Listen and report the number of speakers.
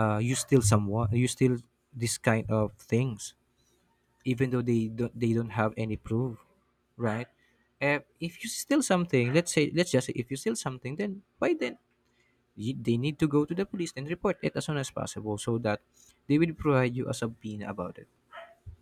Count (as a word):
one